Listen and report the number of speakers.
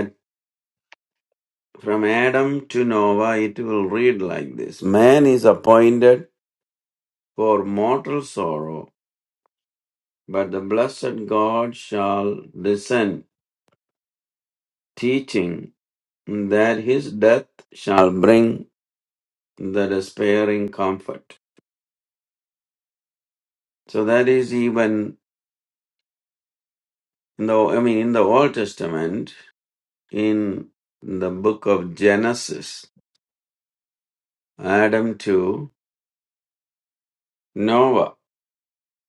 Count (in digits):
1